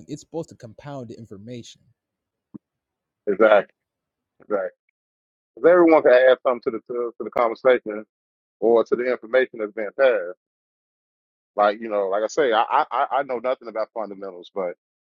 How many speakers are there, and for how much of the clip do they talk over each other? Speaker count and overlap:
2, no overlap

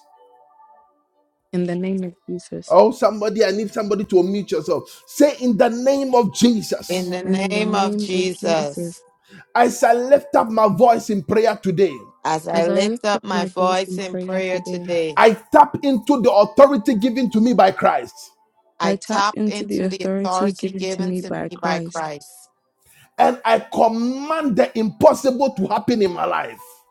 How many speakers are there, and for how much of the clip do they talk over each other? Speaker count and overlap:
3, about 26%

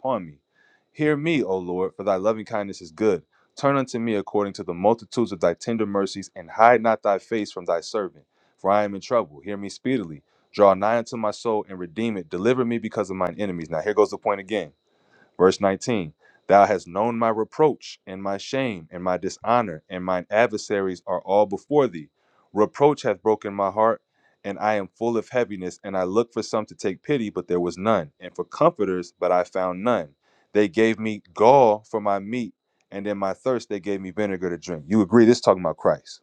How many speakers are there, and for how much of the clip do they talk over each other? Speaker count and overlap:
1, no overlap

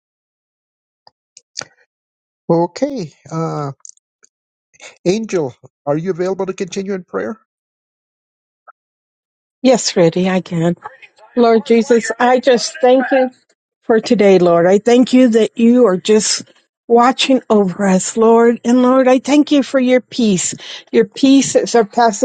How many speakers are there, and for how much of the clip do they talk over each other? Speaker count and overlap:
2, no overlap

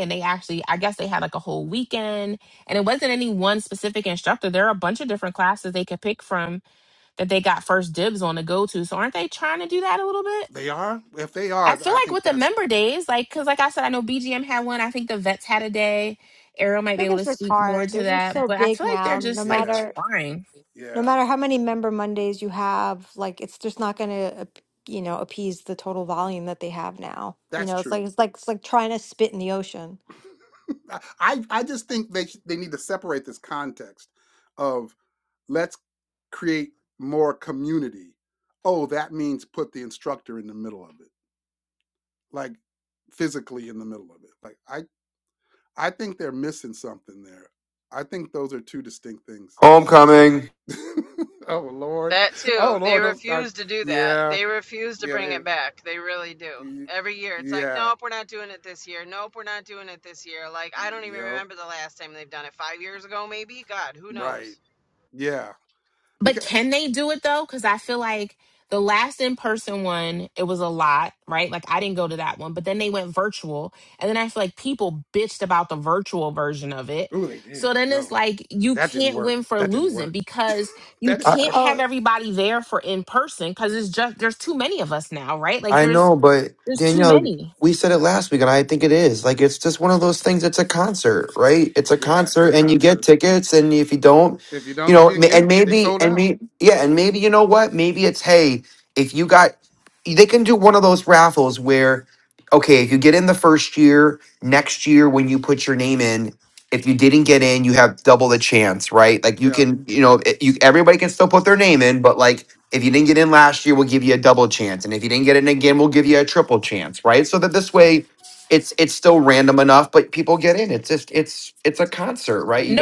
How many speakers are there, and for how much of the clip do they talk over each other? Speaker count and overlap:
5, about 12%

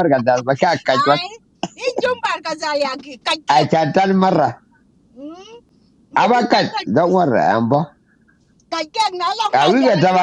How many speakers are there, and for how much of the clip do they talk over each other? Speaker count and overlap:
2, about 17%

